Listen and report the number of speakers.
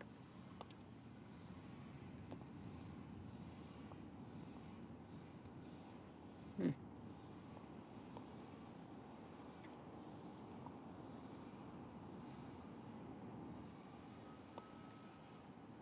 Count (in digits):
0